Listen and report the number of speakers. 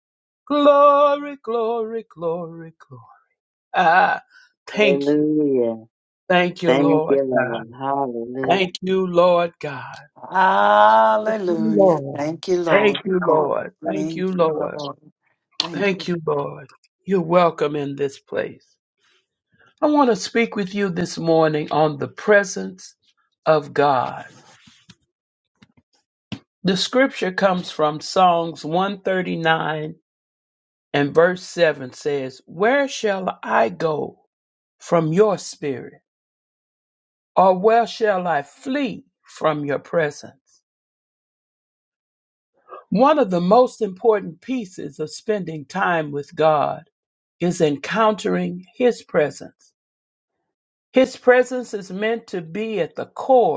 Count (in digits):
3